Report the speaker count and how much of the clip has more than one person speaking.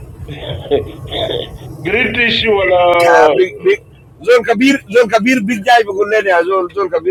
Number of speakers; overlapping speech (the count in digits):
2, about 5%